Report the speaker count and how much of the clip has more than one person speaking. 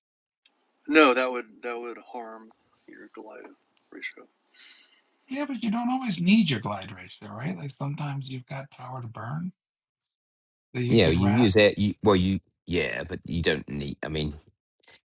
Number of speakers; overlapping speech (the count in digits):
3, about 4%